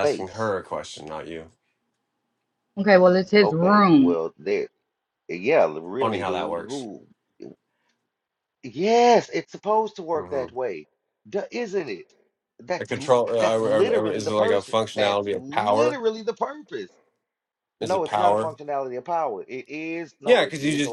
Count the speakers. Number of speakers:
three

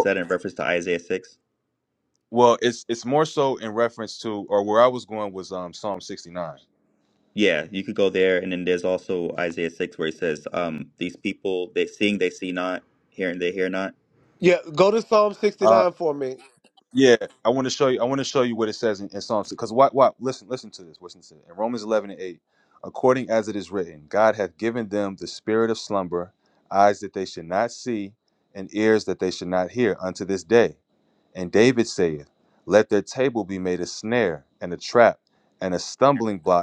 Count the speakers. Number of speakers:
three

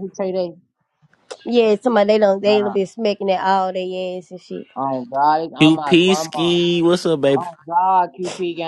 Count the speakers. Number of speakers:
three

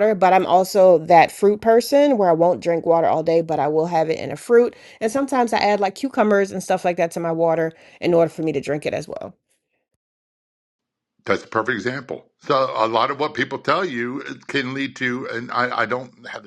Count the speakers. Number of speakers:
two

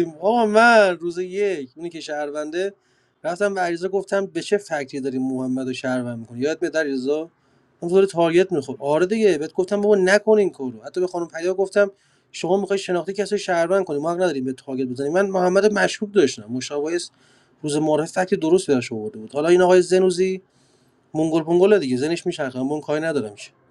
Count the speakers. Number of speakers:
one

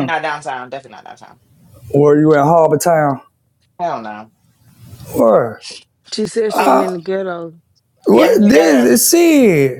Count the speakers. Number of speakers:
three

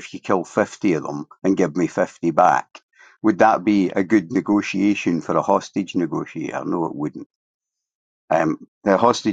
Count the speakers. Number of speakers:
one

